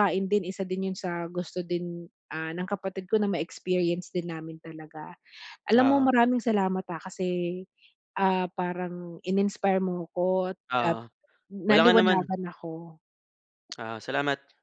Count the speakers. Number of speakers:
2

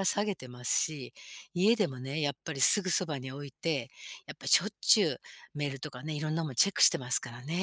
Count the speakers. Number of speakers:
1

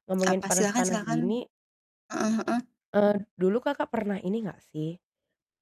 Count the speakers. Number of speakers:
2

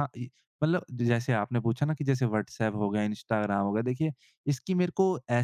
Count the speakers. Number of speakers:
1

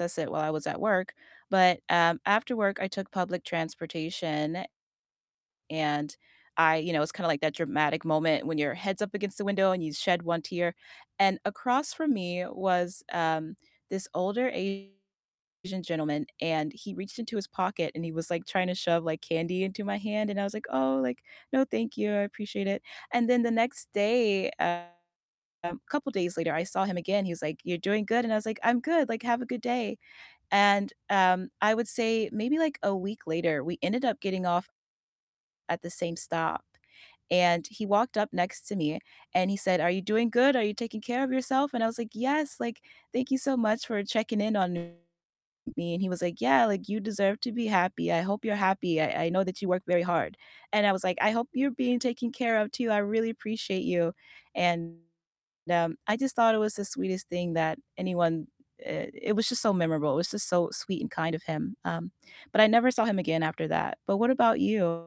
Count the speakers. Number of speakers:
1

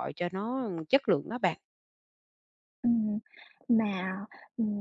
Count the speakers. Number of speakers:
2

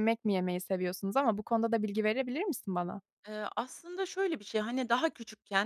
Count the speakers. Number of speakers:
2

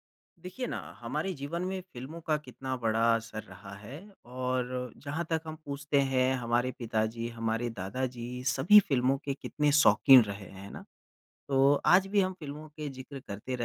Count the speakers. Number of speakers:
1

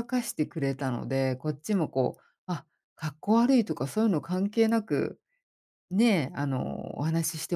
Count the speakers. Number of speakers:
1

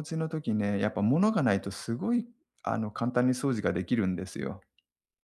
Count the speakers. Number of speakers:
1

